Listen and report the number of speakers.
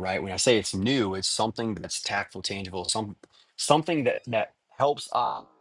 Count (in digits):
1